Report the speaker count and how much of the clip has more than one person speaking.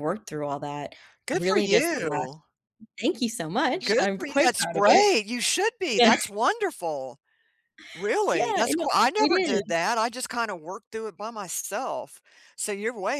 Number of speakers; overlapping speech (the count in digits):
2, about 29%